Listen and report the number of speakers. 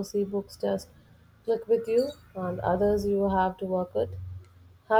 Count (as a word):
one